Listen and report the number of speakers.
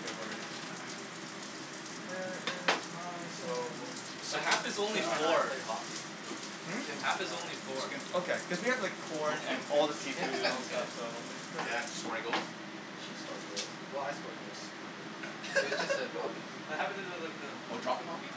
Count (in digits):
4